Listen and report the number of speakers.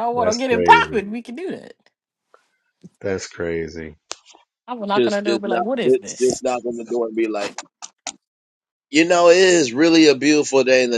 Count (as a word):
three